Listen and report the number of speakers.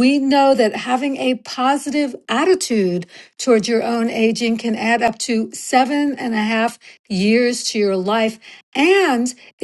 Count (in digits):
1